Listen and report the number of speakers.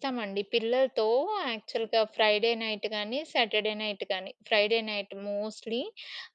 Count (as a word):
one